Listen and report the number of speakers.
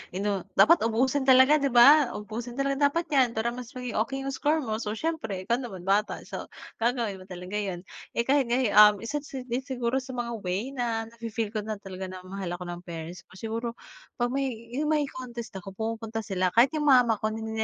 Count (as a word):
one